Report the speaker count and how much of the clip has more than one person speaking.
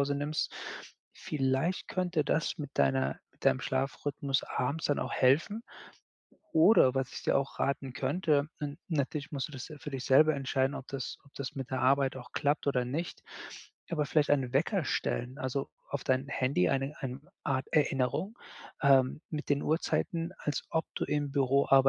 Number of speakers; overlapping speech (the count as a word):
one, no overlap